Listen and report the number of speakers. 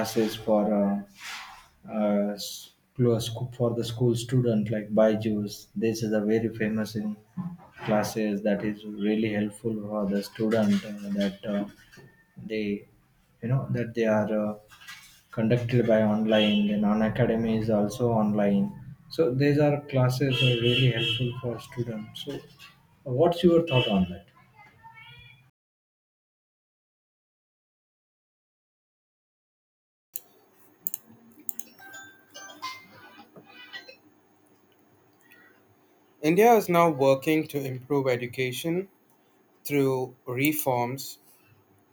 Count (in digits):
2